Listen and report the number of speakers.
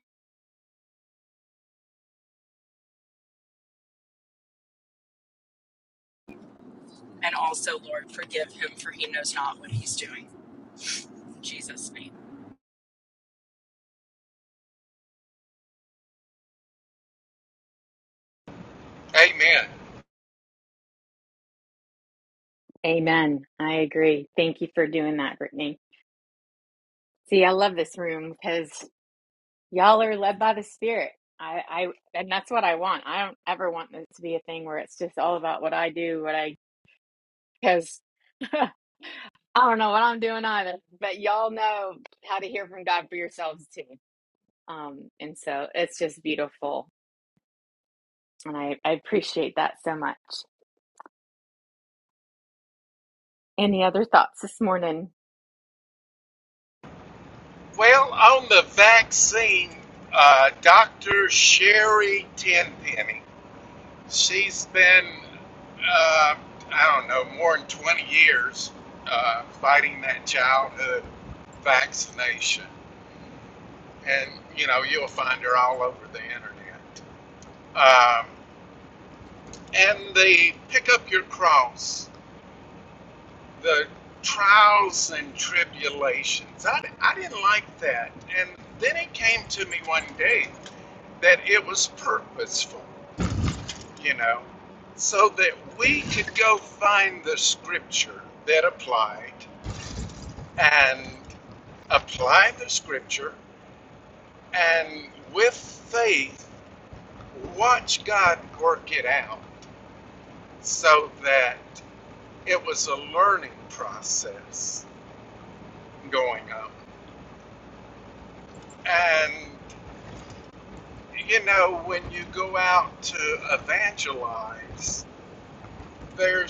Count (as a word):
three